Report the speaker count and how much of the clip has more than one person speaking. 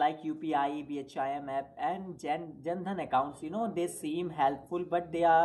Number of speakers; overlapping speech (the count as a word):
one, no overlap